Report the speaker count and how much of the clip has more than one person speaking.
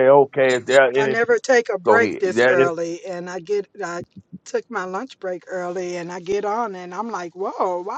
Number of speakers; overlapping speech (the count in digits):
2, about 14%